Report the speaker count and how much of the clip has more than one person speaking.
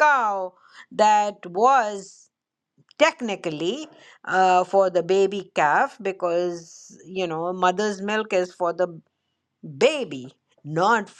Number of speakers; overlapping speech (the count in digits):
1, no overlap